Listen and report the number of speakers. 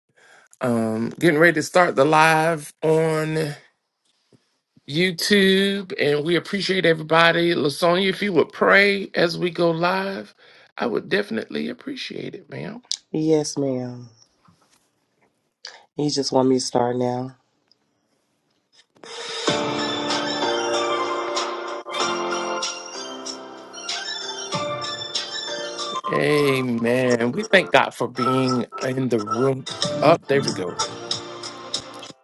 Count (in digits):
2